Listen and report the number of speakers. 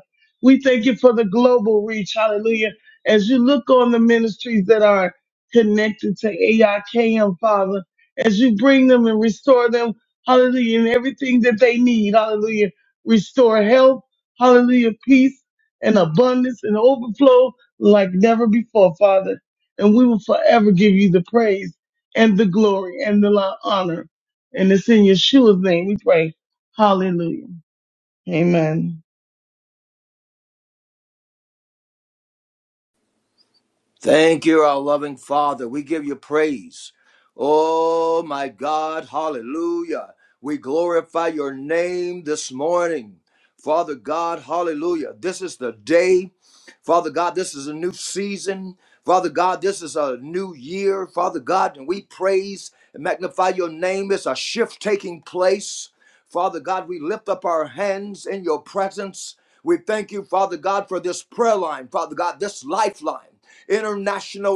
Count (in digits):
2